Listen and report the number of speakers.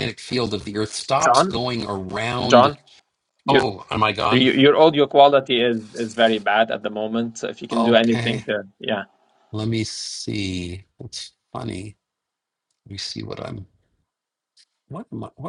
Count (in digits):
2